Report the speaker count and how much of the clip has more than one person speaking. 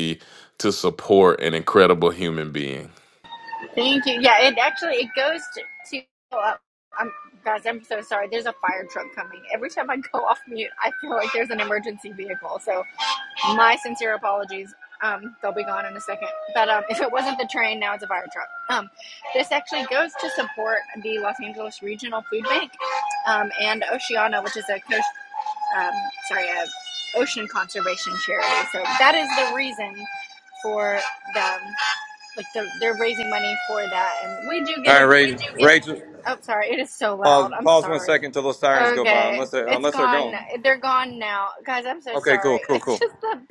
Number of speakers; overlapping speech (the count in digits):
3, about 10%